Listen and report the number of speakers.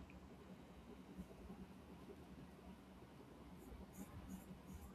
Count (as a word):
zero